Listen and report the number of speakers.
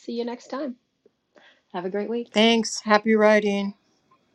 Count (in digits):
2